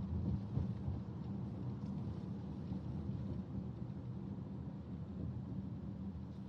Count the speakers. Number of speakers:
0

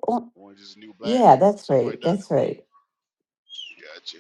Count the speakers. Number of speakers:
2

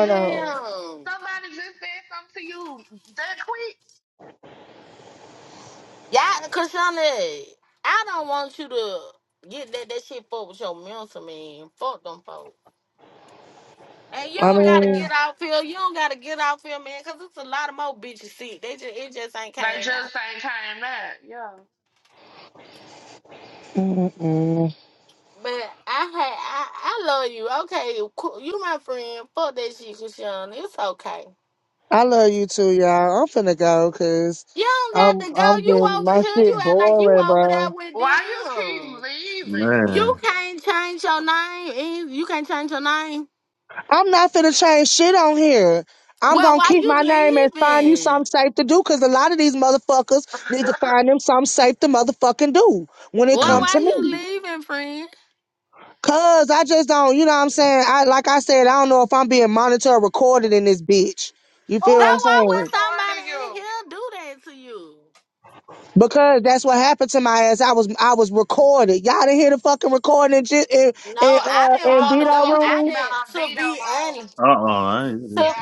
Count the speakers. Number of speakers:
4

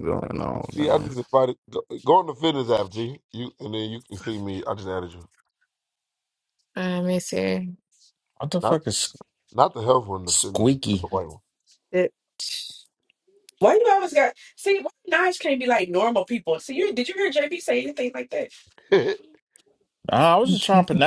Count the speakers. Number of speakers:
5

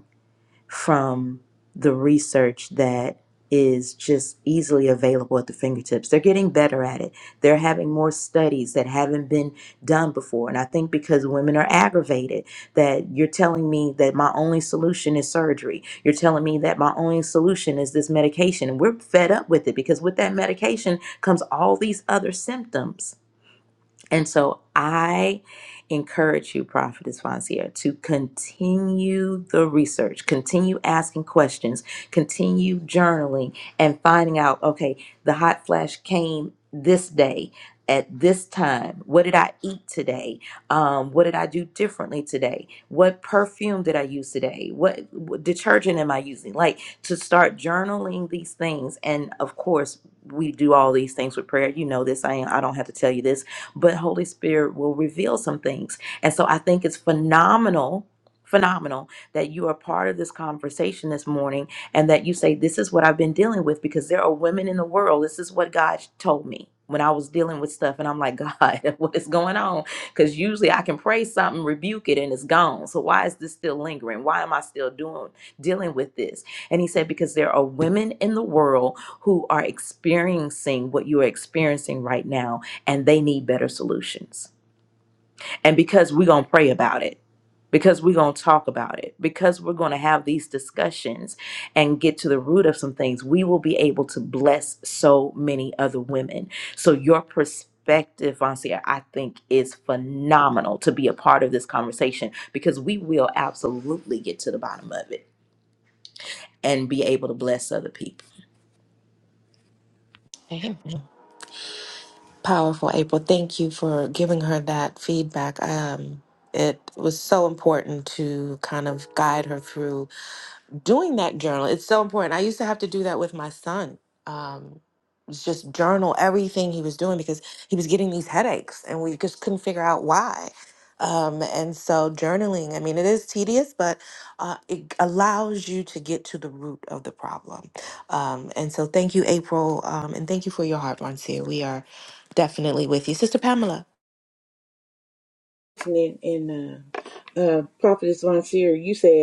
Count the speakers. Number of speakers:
3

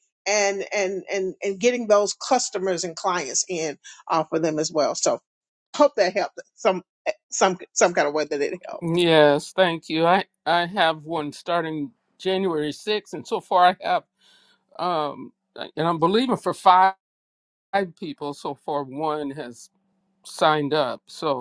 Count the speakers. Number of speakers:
2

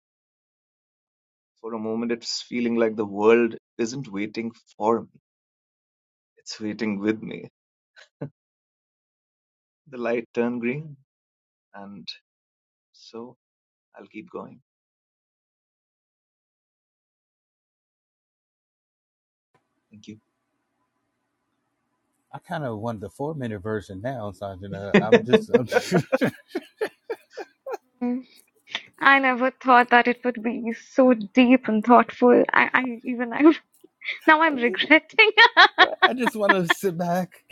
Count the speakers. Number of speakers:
3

